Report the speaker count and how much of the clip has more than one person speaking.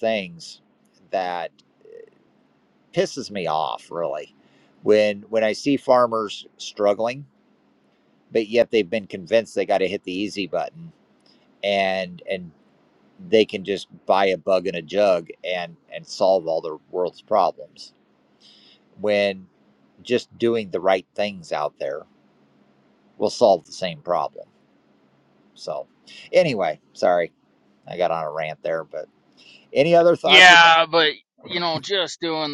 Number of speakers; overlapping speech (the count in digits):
2, about 2%